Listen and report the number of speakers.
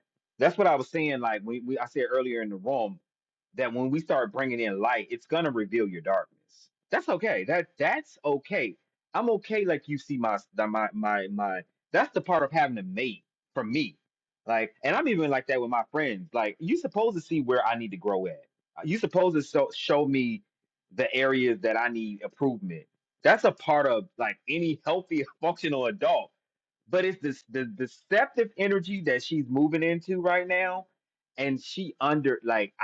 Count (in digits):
1